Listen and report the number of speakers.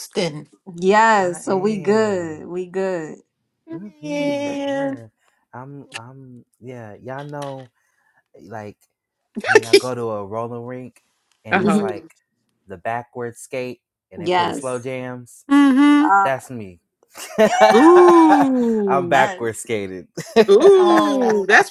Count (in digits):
3